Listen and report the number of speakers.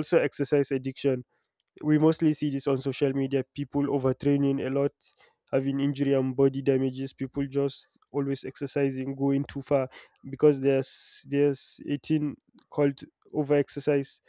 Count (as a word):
one